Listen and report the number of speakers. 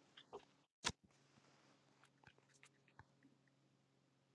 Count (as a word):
zero